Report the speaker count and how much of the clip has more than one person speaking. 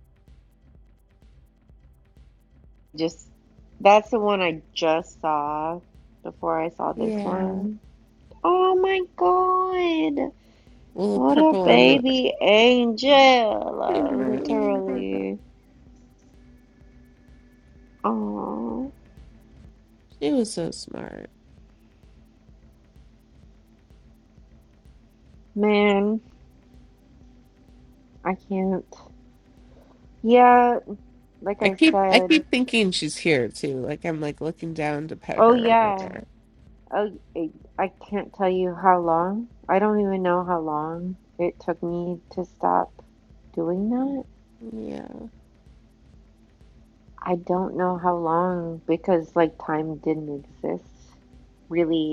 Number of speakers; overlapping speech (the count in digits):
2, about 7%